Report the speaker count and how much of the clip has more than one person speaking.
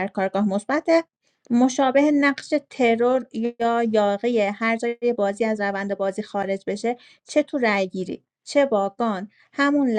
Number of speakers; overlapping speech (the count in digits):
1, no overlap